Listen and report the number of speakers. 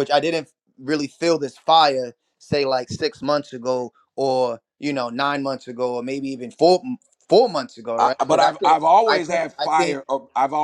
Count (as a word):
two